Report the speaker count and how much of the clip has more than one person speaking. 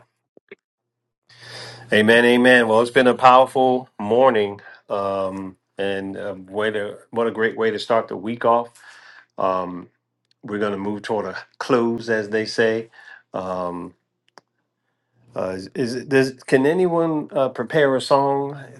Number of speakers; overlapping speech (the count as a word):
one, no overlap